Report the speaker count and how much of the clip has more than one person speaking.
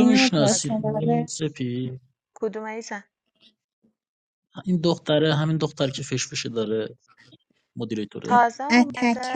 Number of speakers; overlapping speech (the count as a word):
three, about 17%